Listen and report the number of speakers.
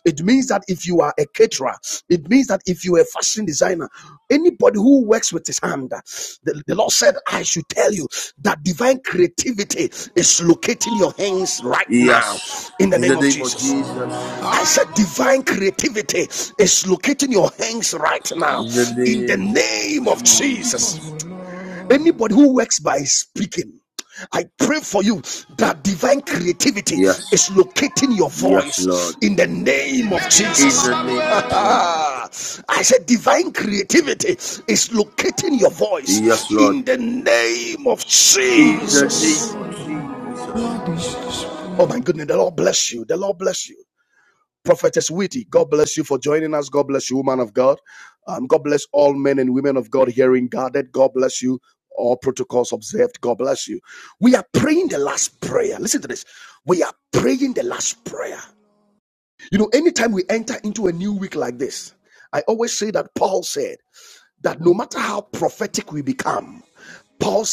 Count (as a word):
two